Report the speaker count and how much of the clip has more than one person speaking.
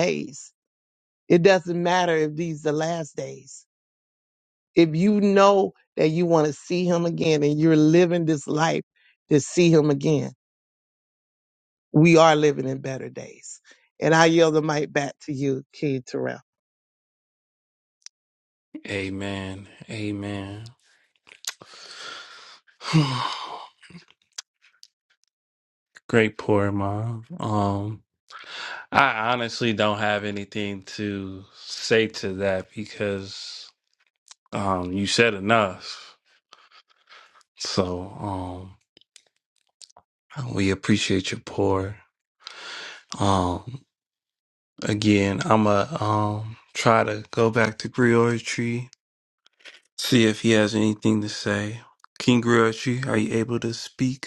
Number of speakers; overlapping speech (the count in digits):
2, no overlap